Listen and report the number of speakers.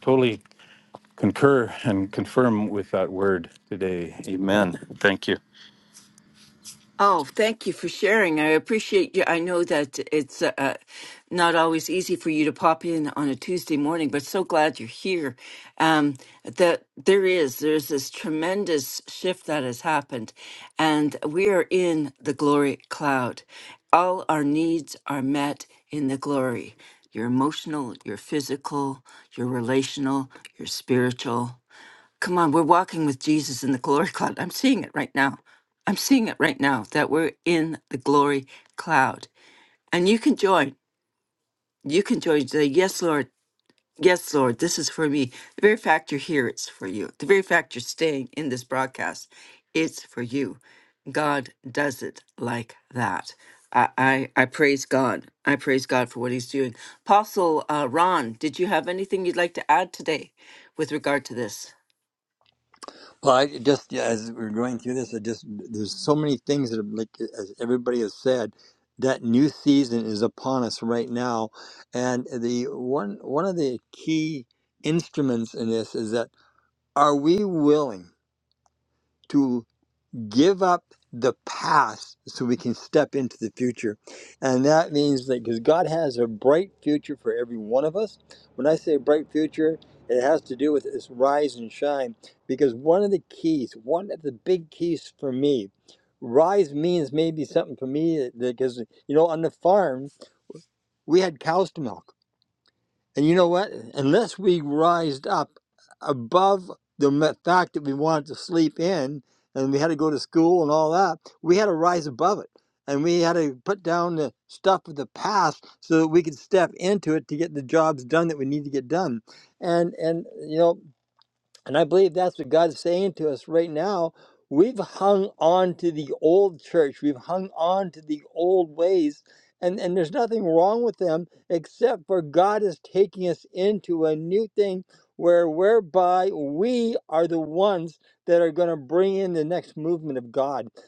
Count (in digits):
3